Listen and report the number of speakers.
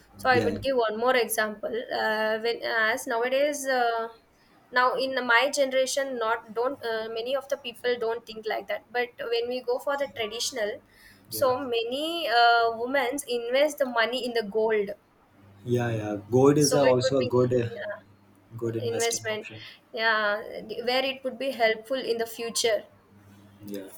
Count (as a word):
two